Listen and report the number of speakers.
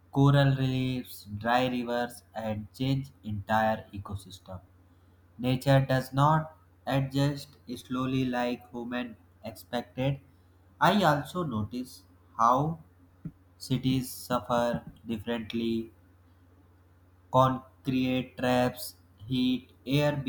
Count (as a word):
one